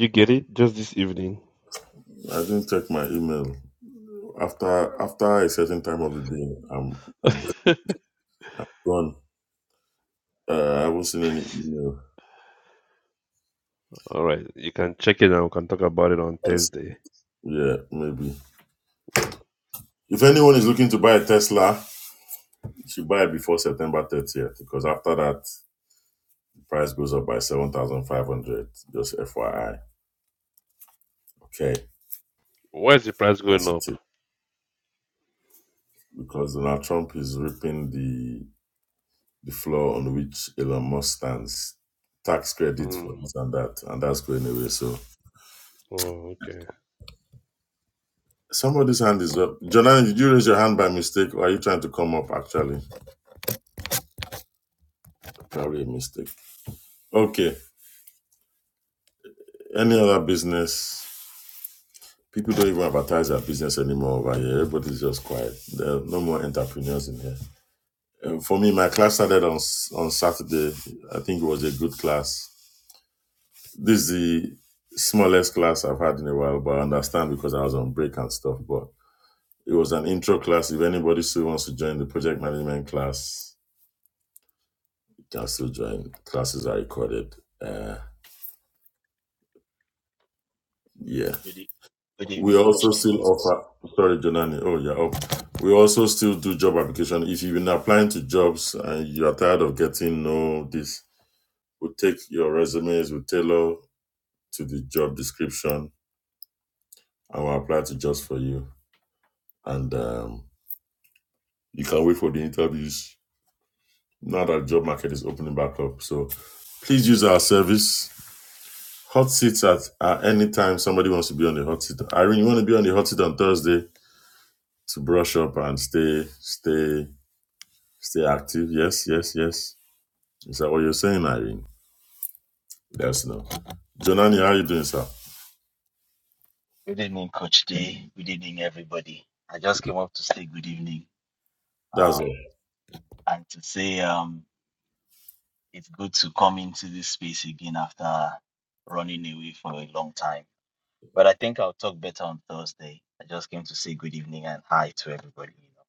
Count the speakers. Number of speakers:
three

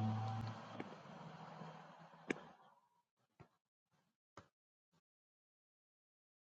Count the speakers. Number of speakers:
zero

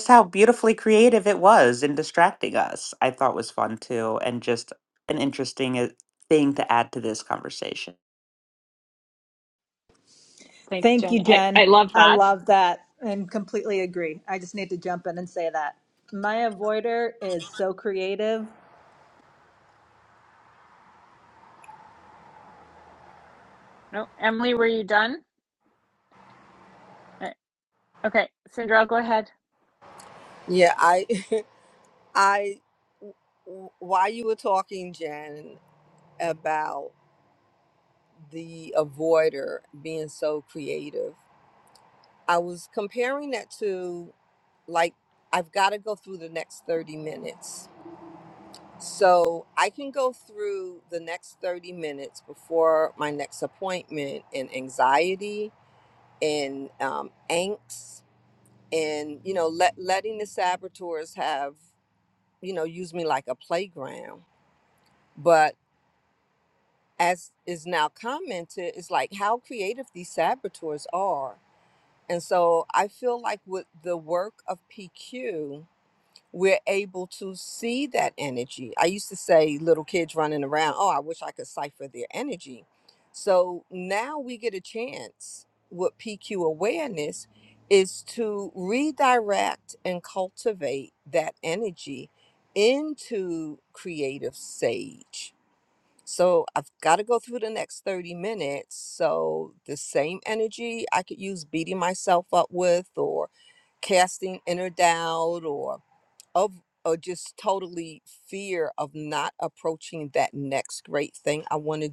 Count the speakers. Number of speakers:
four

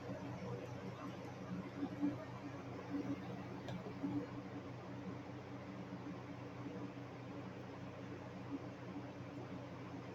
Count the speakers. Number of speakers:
zero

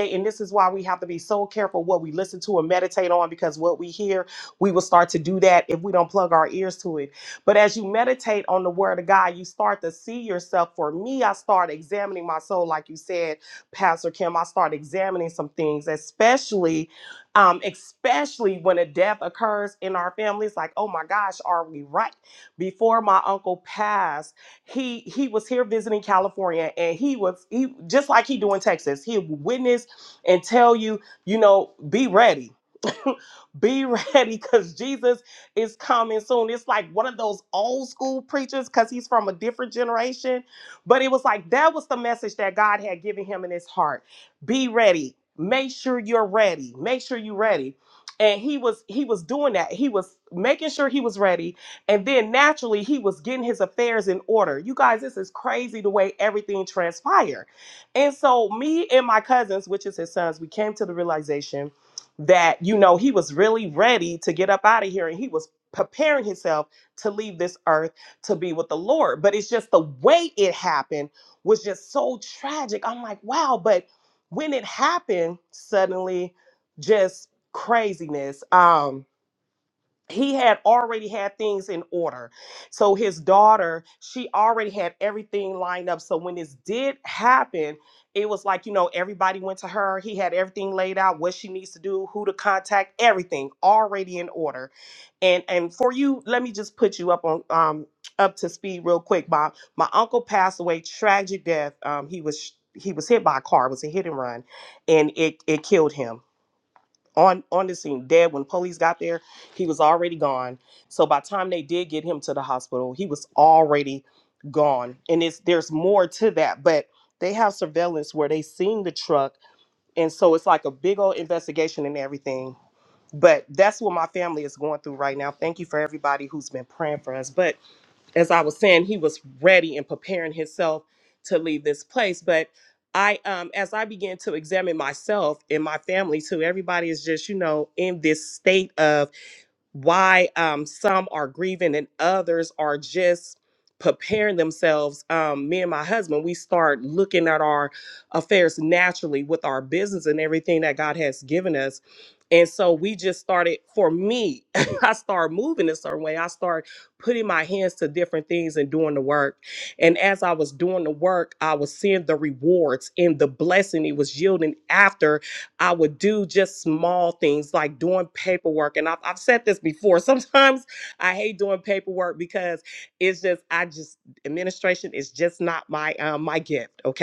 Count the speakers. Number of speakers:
one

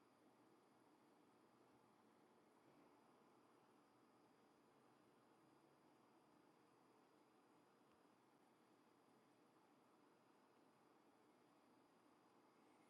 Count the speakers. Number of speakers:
zero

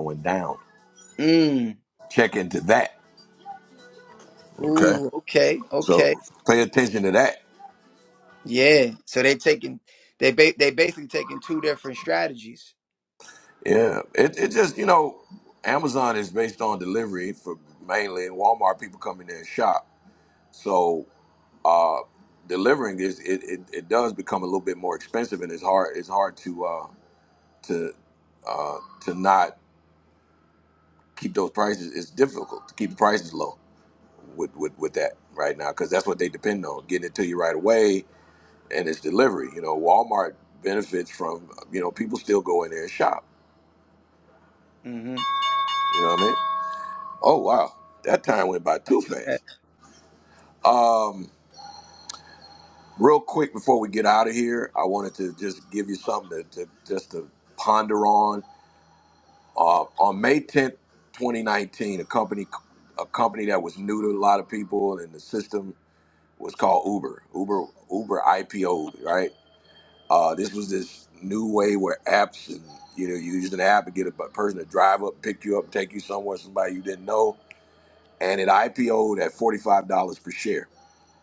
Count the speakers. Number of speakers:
two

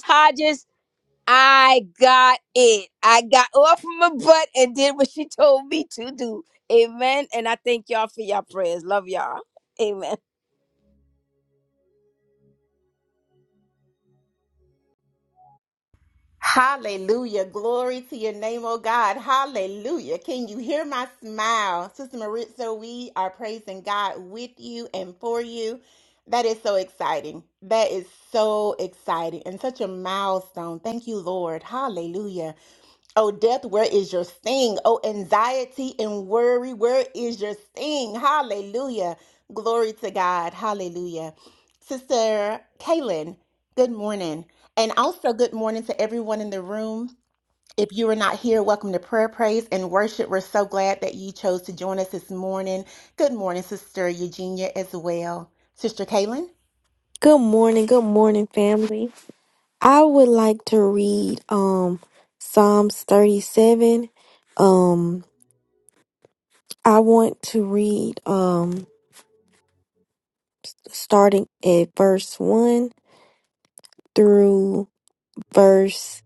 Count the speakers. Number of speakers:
three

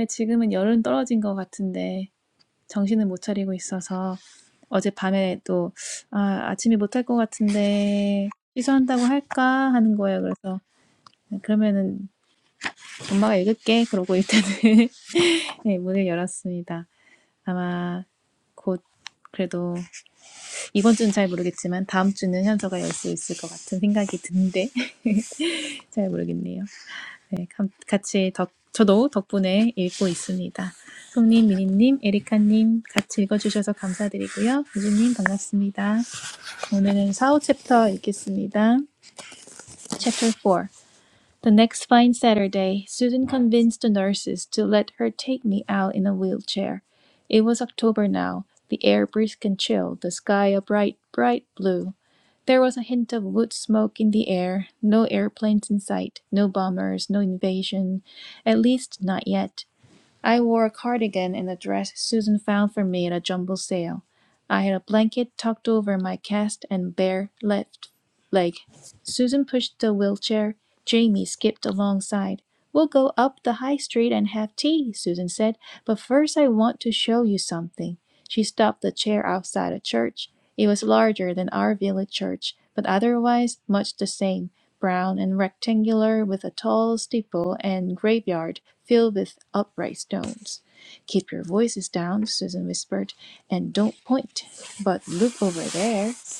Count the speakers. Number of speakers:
one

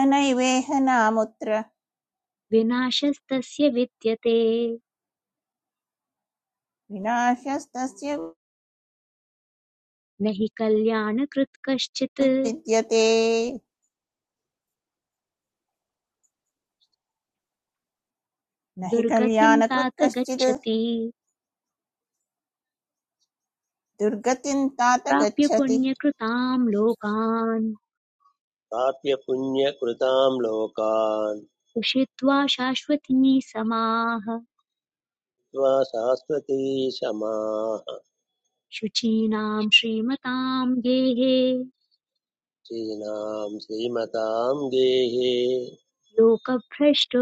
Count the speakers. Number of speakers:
three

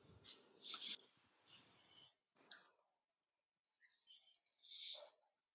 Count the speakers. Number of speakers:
zero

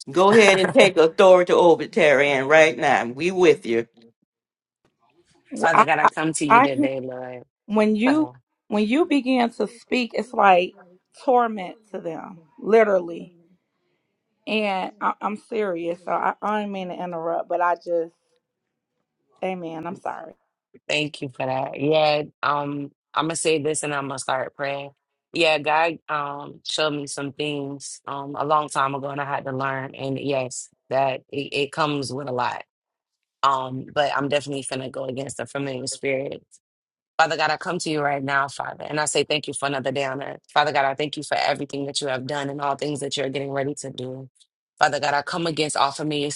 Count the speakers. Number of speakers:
three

